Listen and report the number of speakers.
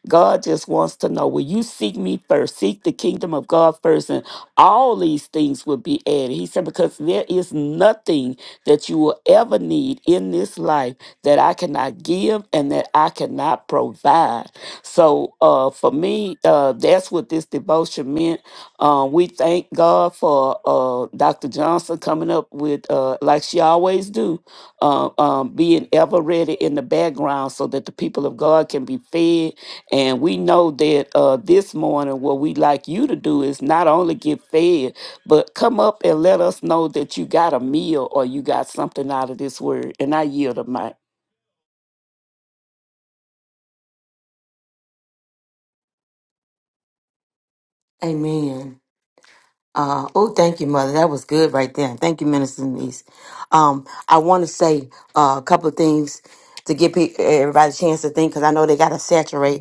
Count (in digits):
2